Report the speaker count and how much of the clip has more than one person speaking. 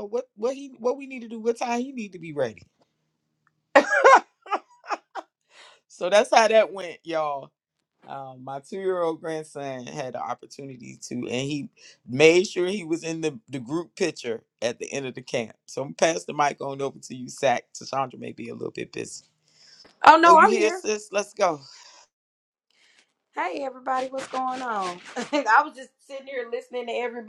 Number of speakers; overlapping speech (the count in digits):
2, about 2%